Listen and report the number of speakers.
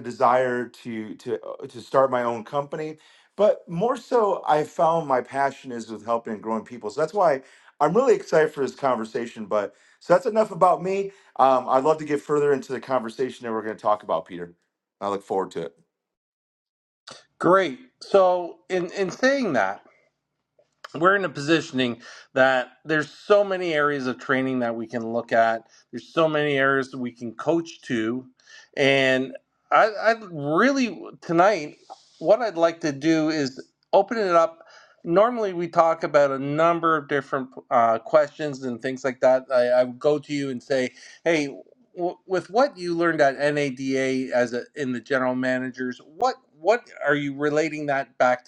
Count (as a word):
two